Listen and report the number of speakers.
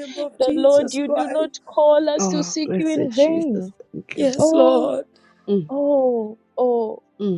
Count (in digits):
3